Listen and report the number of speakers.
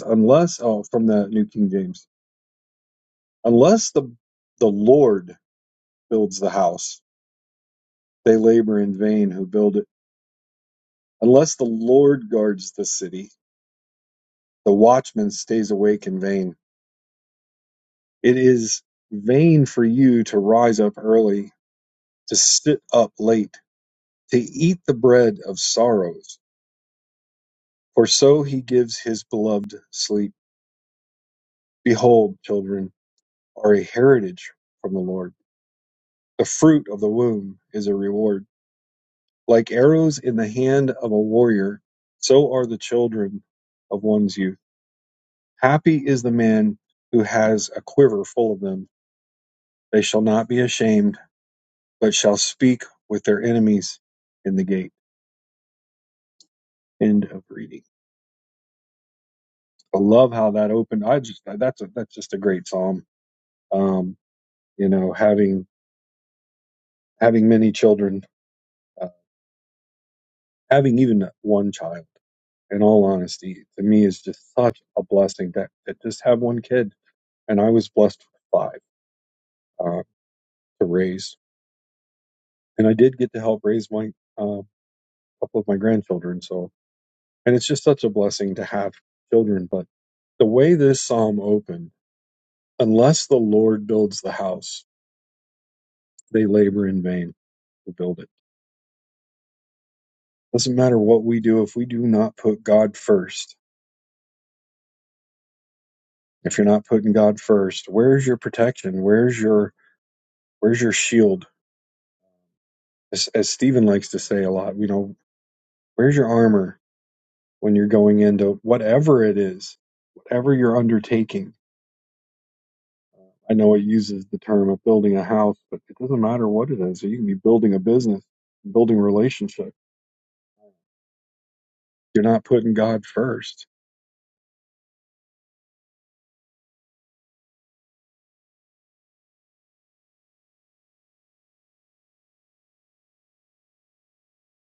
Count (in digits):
1